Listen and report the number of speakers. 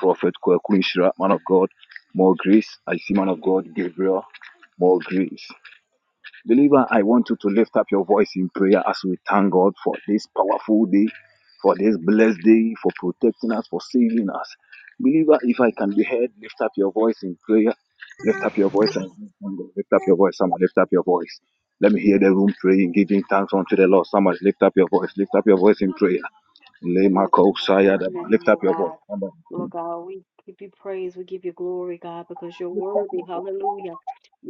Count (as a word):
two